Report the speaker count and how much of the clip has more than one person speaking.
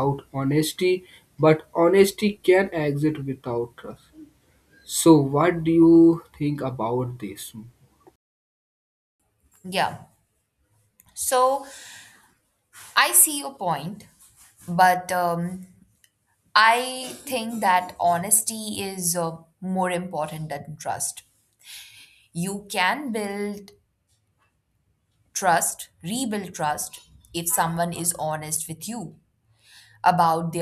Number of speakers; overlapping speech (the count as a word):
two, no overlap